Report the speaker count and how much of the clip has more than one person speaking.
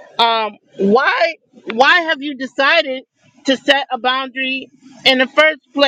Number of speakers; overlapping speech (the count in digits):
1, no overlap